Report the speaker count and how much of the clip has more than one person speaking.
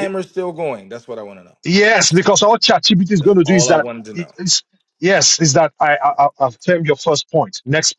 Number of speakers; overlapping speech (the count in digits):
2, about 10%